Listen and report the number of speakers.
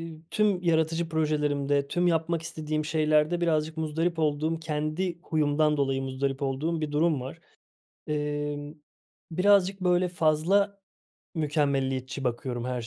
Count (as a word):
one